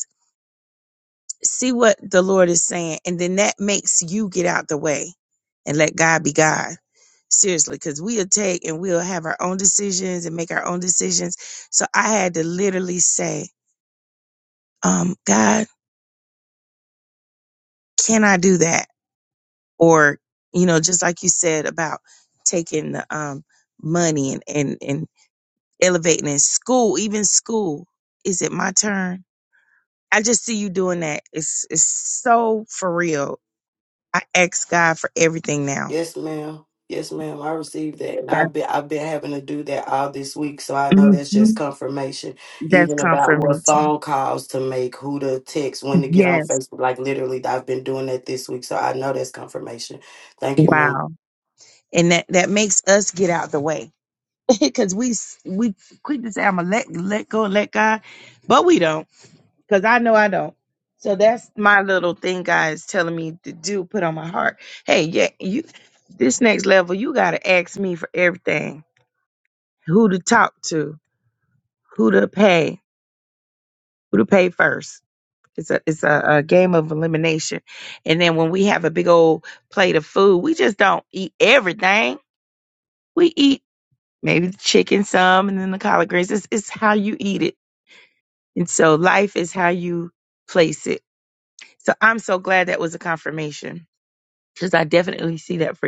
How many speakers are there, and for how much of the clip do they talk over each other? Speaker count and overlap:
two, about 3%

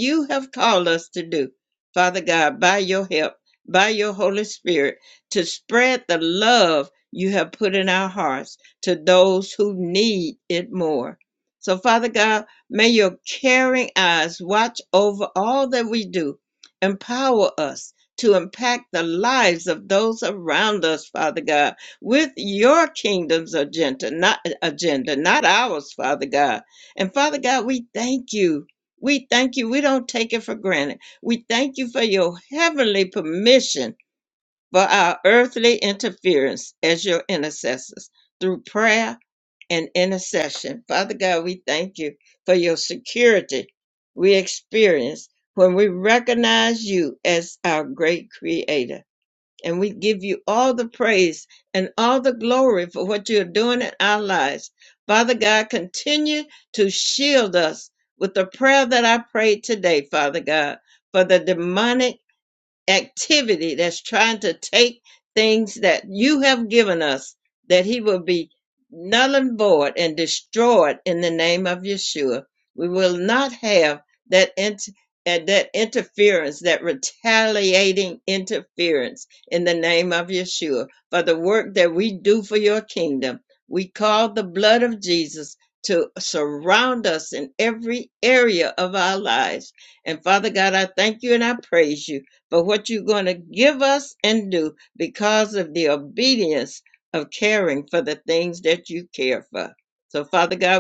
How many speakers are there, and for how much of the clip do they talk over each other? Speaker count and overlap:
one, no overlap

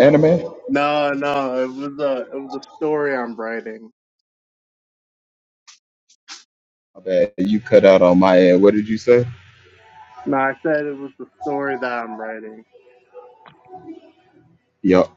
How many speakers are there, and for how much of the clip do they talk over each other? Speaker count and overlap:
two, no overlap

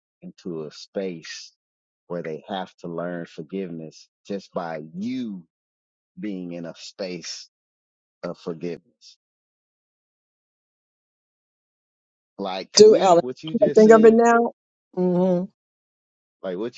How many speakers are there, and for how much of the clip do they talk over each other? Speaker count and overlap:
two, about 6%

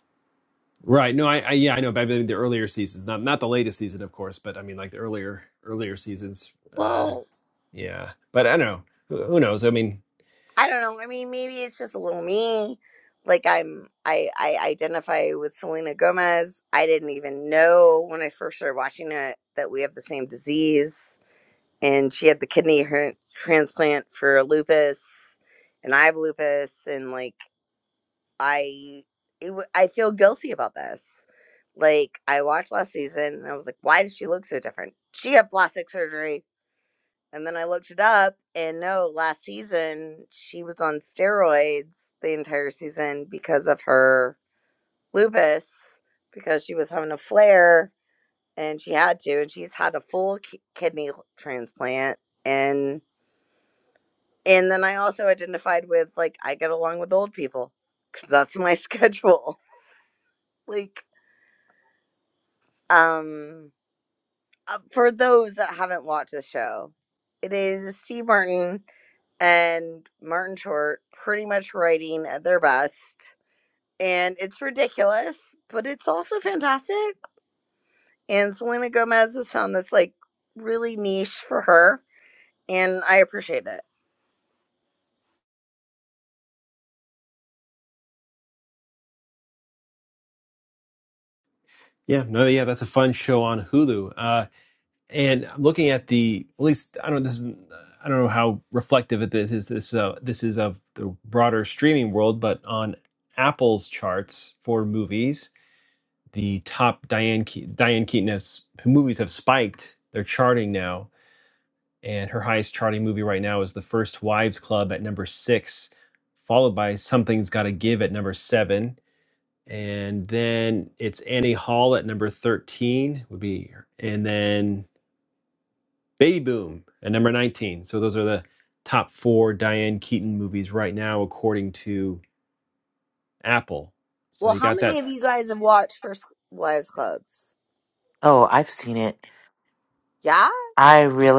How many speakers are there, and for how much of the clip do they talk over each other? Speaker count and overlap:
three, about 1%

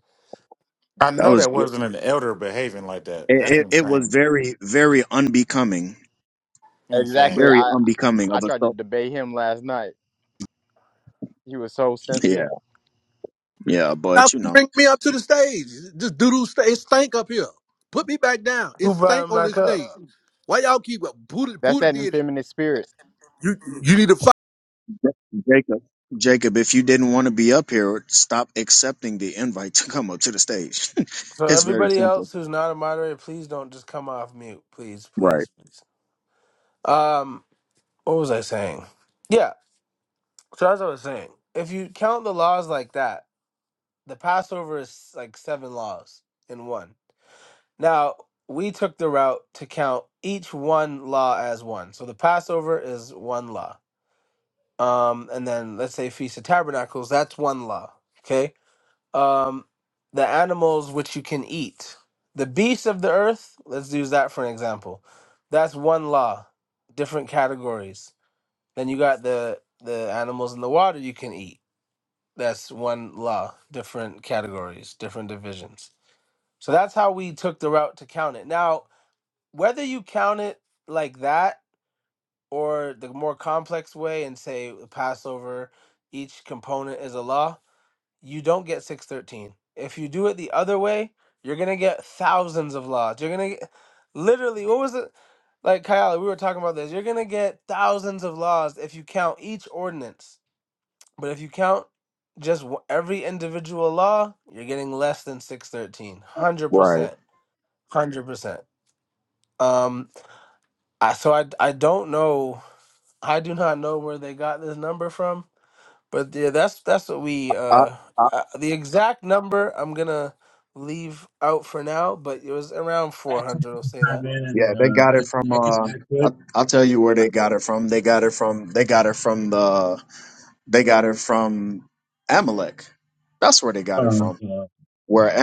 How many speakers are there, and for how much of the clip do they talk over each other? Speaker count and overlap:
six, about 7%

